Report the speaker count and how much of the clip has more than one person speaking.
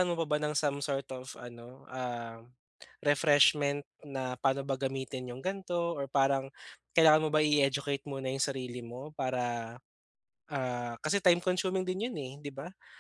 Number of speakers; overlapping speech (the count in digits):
1, no overlap